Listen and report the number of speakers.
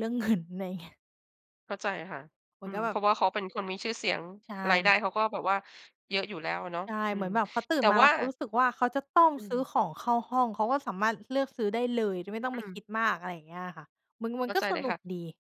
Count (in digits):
2